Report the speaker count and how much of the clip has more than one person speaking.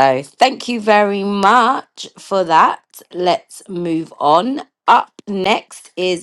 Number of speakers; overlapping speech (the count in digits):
1, no overlap